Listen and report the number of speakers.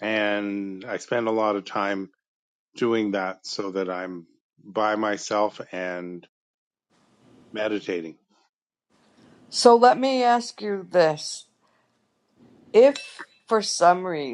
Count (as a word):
two